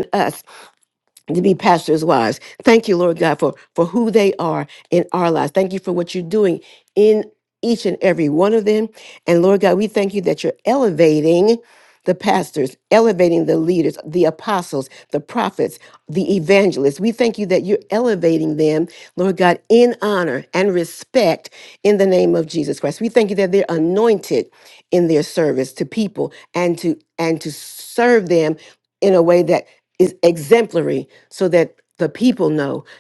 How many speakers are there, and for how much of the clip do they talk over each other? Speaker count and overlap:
1, no overlap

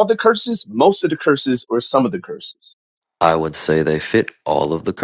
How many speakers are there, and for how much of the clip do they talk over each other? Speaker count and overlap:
2, no overlap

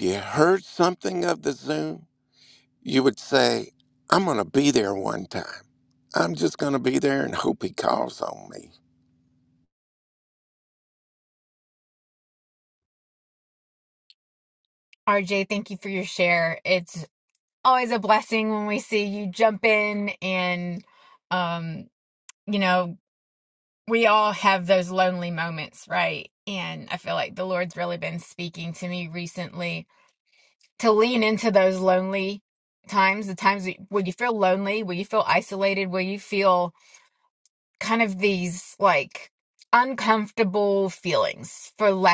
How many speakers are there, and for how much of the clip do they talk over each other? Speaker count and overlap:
2, no overlap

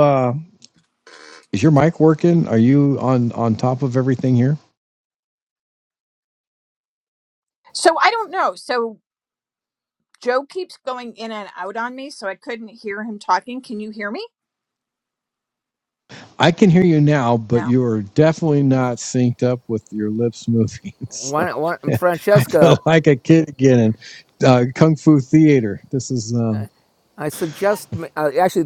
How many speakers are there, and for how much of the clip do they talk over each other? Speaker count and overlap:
3, about 3%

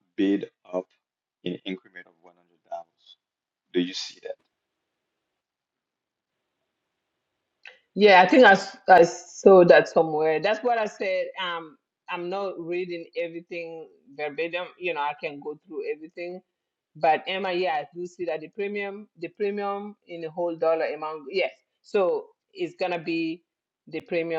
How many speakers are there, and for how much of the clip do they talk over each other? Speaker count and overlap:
2, no overlap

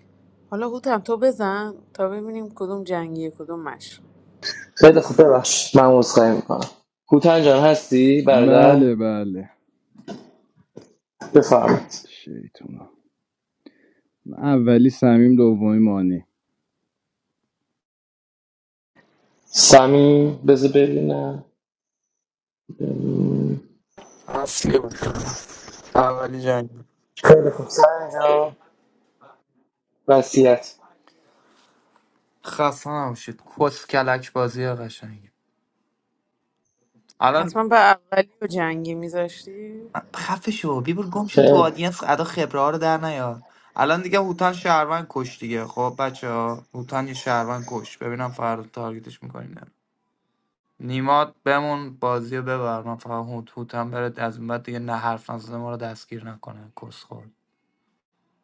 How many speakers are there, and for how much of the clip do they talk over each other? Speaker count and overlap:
4, about 2%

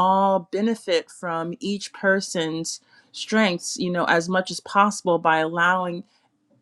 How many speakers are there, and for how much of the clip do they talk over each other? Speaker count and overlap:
1, no overlap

